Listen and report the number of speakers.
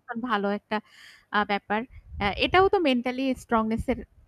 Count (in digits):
1